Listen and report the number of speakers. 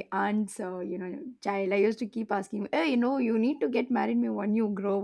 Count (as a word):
one